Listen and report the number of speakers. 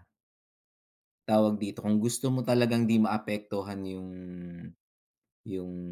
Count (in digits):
1